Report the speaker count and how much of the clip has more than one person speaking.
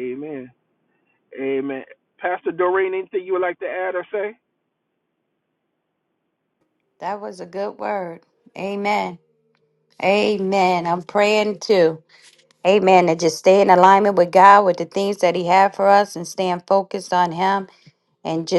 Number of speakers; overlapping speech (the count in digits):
2, no overlap